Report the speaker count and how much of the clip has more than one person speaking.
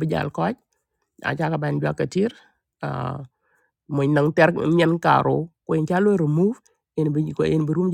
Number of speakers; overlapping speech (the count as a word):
one, no overlap